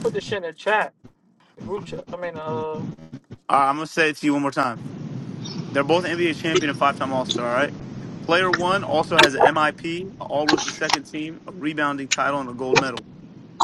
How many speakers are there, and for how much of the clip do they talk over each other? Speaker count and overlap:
two, no overlap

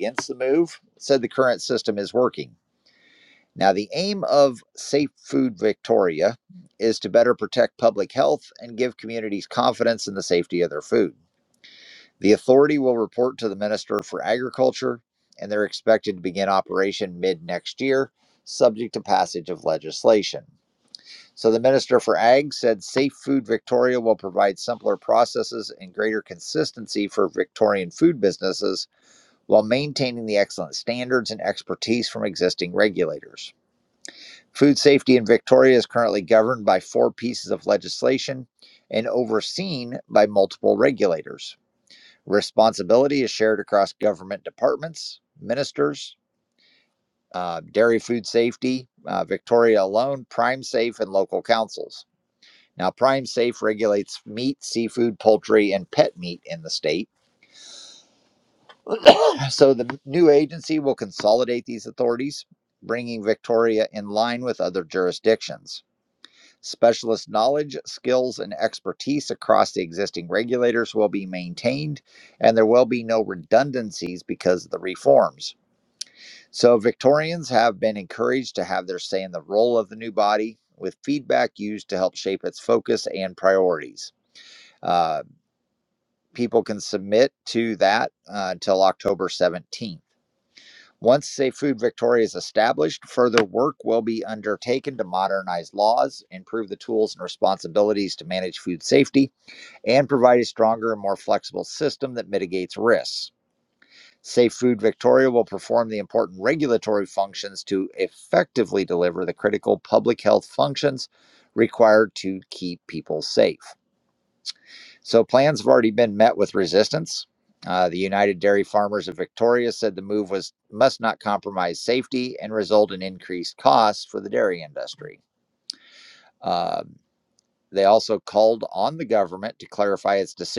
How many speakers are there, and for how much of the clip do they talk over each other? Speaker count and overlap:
one, no overlap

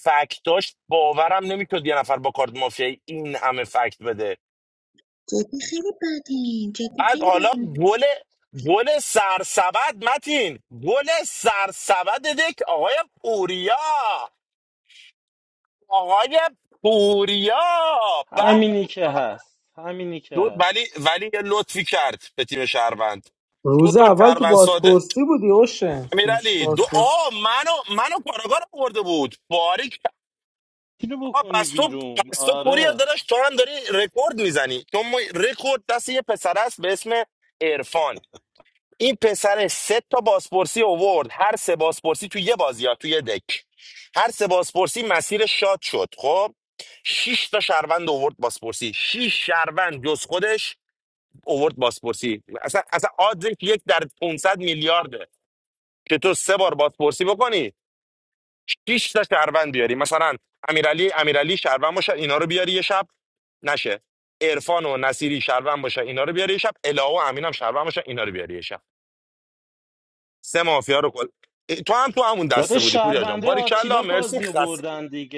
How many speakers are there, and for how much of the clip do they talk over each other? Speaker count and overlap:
four, about 9%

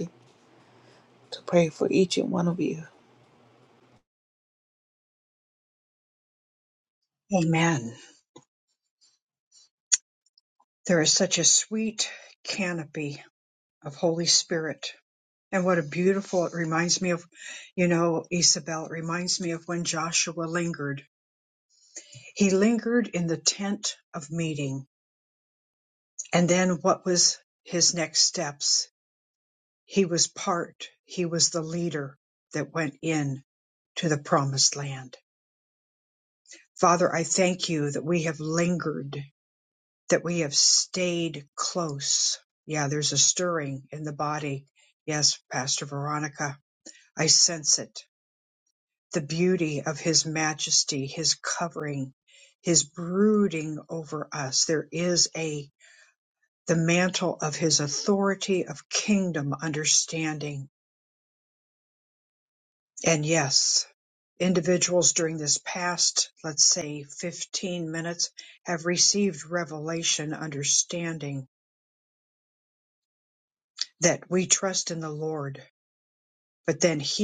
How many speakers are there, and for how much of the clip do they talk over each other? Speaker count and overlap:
two, no overlap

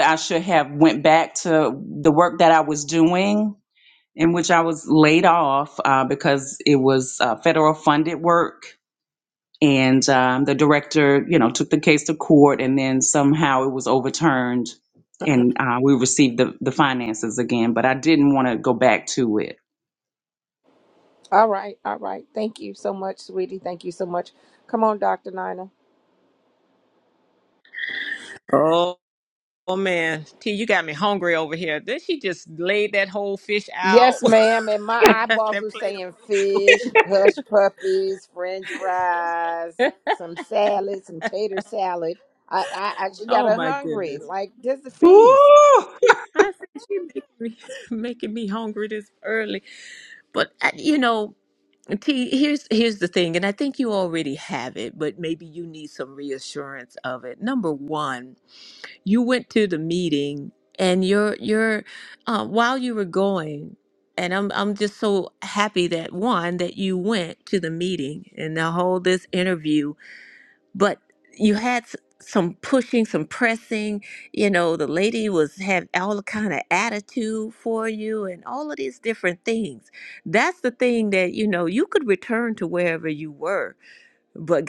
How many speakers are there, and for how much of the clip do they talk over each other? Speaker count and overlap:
three, about 3%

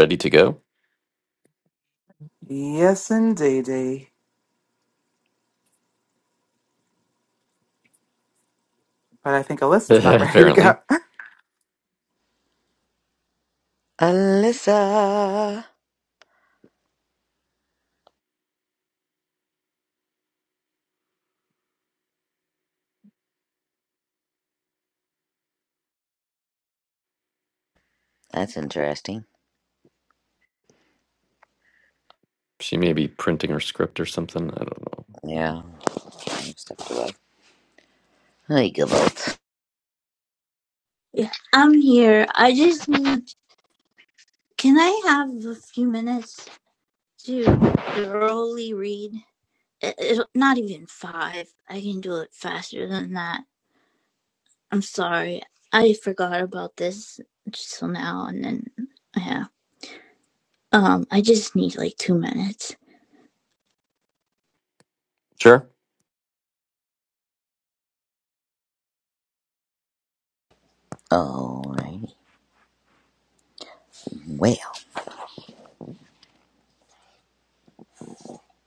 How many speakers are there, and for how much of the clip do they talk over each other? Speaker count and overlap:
four, about 1%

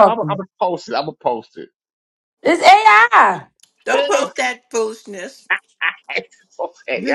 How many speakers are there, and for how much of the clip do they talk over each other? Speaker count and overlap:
three, about 13%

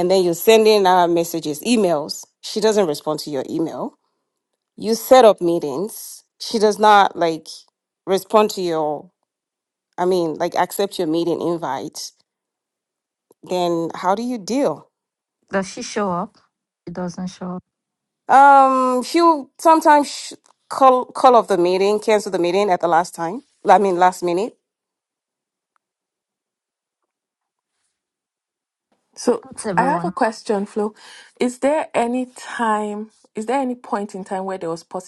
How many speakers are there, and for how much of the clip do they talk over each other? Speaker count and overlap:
three, about 2%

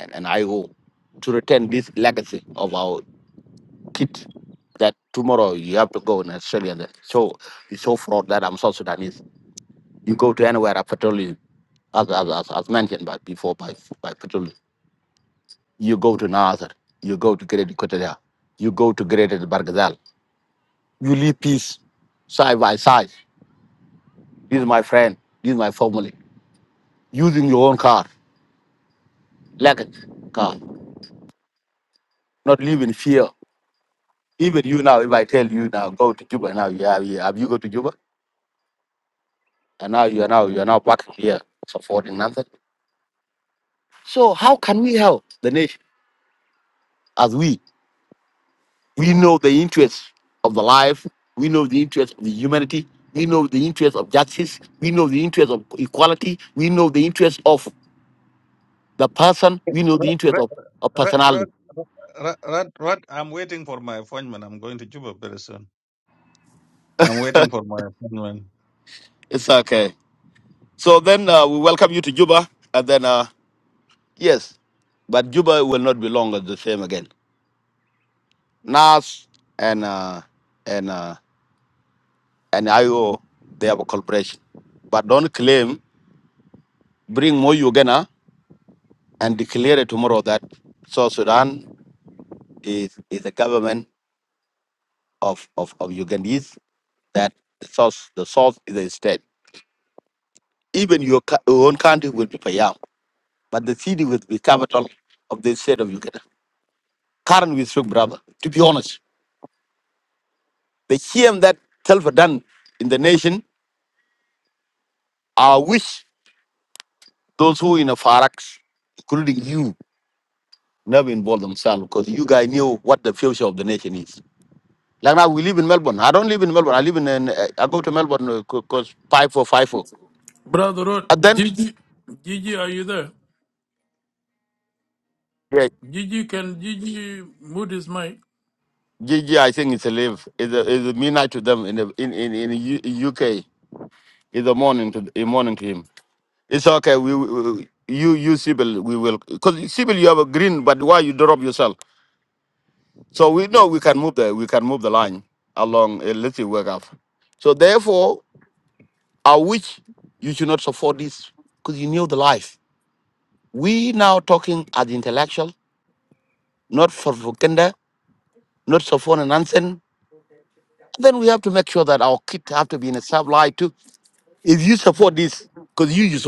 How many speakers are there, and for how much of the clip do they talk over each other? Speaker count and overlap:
three, under 1%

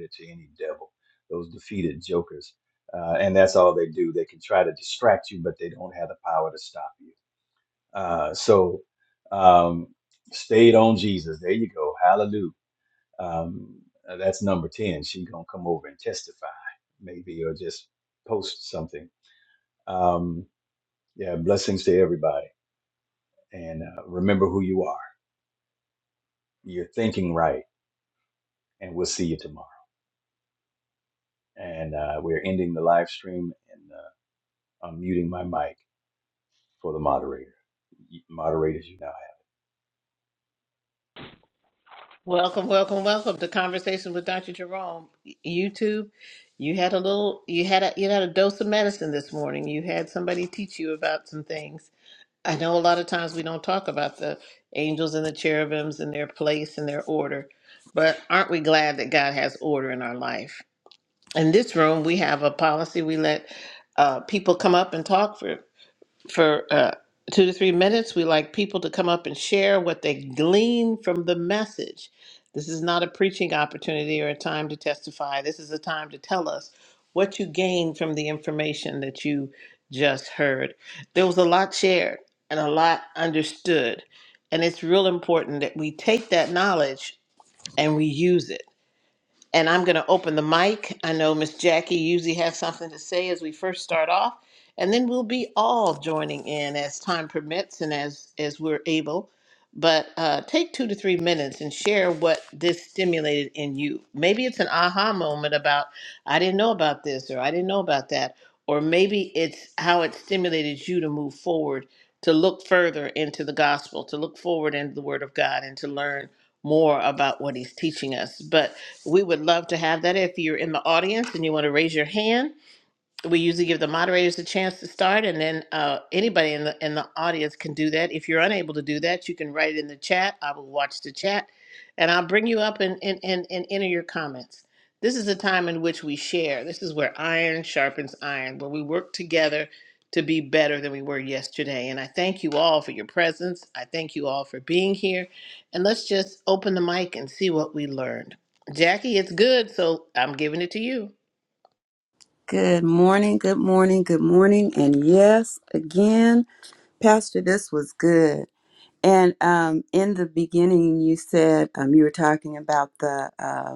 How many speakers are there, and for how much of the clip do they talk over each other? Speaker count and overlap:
three, no overlap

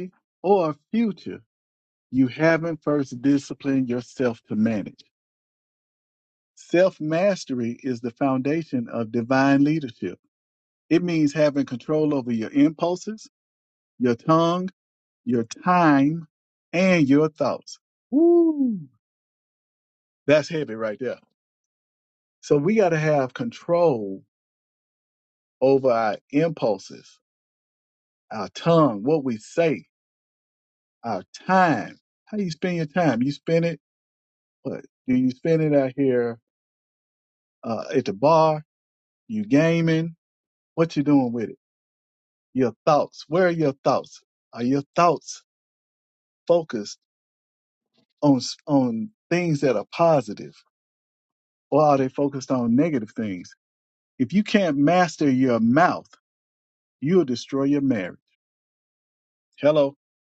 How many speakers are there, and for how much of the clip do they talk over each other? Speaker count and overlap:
one, no overlap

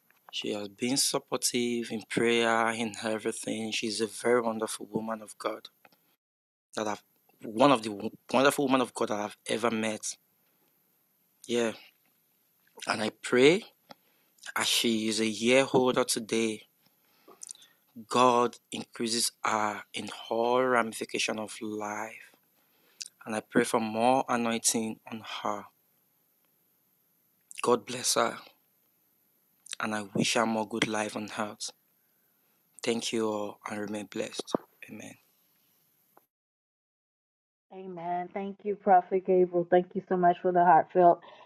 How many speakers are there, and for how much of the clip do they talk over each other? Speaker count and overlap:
two, no overlap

